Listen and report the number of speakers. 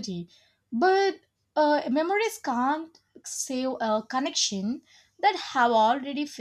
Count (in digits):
1